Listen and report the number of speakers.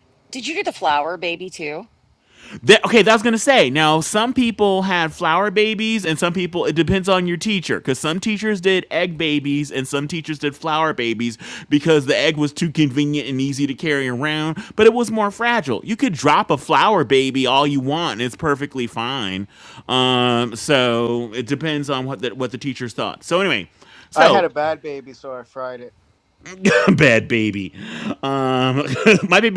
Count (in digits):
3